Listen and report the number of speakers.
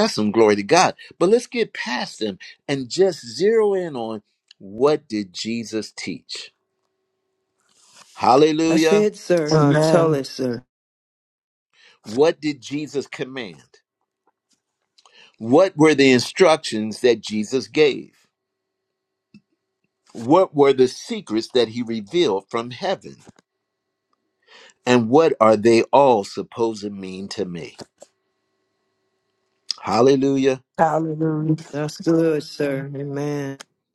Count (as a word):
three